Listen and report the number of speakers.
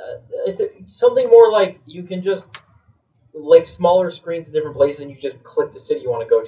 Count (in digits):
1